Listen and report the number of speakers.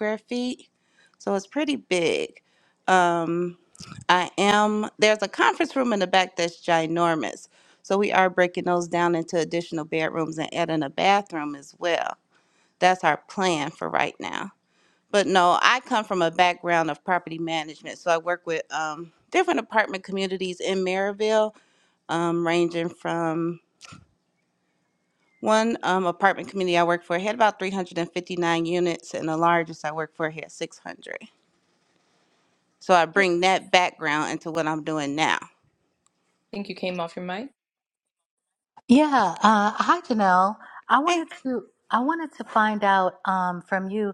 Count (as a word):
three